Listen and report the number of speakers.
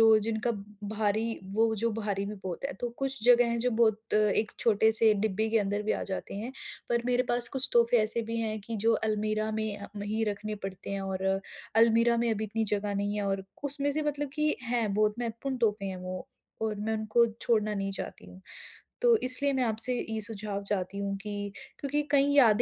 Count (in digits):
1